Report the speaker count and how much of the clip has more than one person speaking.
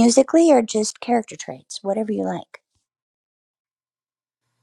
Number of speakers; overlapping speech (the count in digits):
1, no overlap